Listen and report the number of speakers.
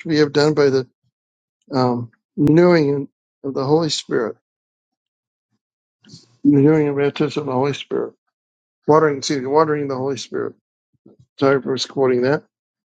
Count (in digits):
1